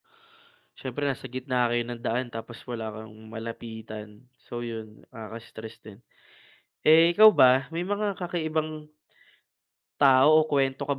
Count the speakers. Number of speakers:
one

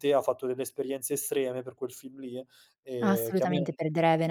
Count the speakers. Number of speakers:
two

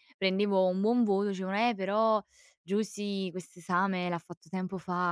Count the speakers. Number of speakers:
one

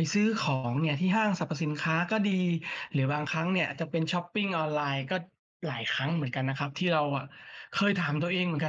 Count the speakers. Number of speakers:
one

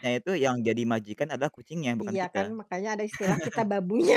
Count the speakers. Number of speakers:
two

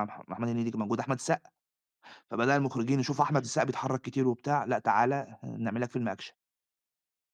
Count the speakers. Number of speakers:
one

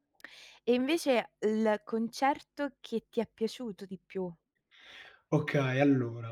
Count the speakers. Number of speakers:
two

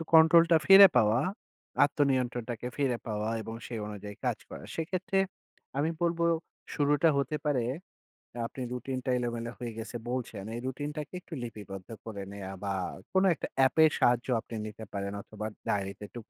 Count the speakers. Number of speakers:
one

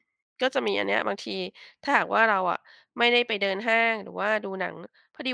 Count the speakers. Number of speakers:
one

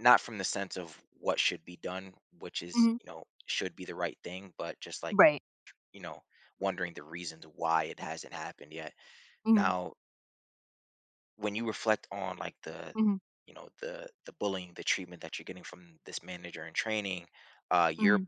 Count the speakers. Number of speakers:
two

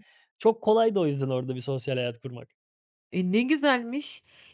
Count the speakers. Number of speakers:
two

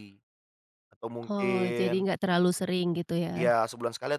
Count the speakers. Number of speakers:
two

